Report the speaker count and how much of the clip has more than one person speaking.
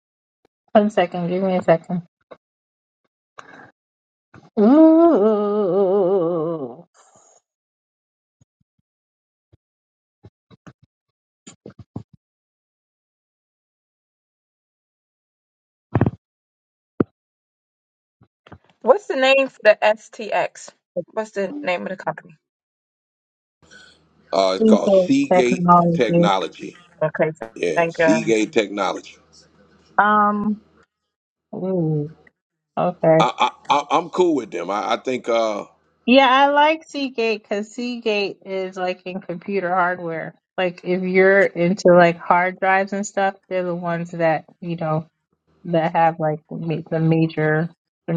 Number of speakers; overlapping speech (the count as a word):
three, about 4%